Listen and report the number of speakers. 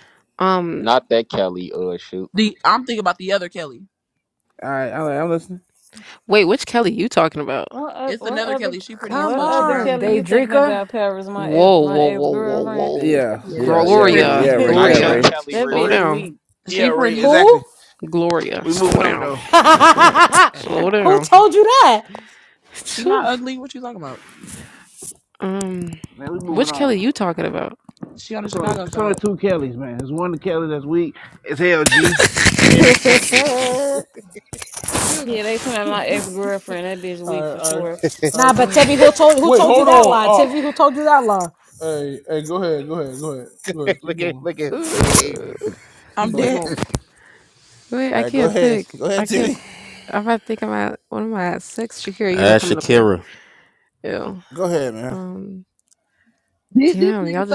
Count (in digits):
7